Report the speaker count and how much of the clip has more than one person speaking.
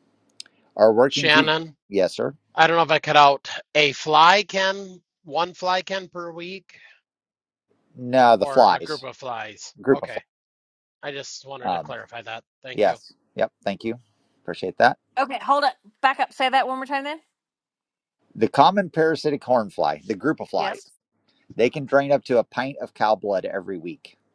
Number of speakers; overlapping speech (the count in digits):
3, about 7%